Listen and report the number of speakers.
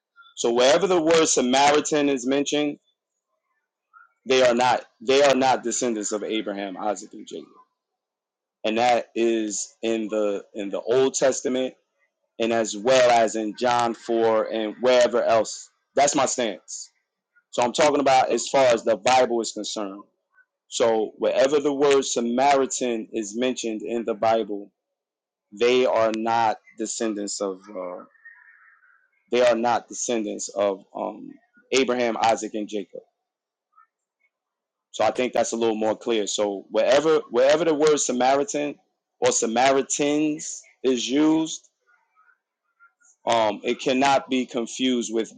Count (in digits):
1